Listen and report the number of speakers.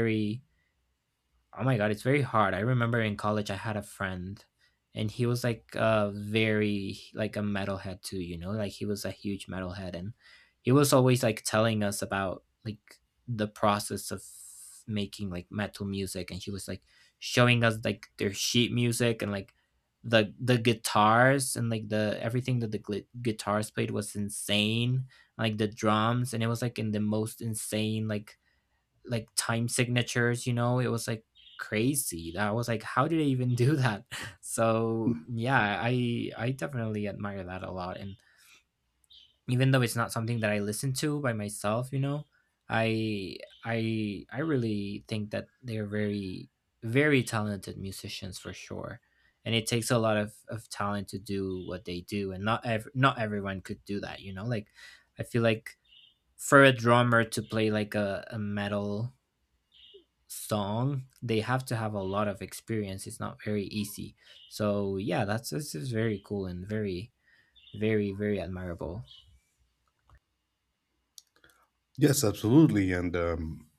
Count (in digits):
2